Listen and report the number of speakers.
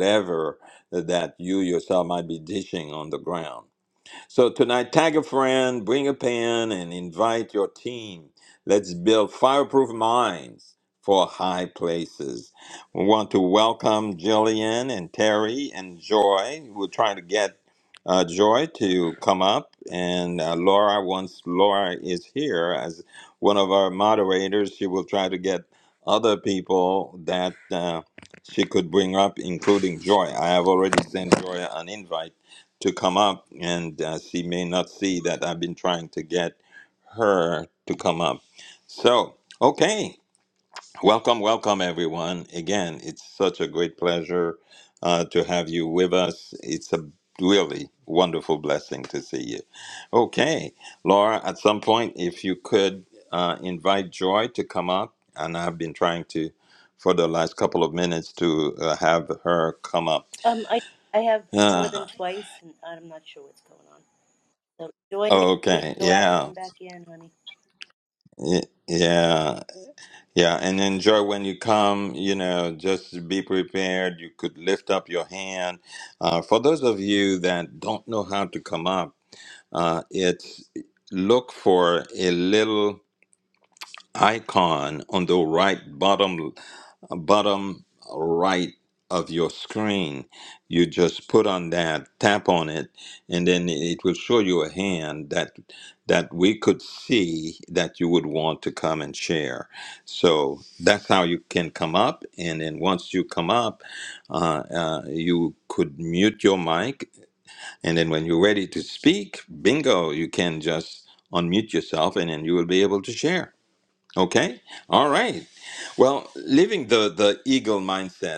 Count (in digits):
2